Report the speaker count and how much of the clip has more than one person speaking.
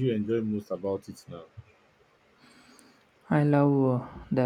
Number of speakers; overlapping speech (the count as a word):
two, no overlap